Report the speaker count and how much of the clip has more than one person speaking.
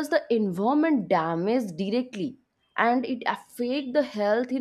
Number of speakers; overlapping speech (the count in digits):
1, no overlap